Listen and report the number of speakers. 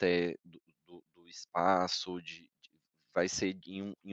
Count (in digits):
1